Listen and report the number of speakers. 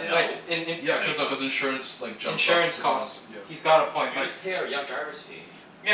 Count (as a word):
three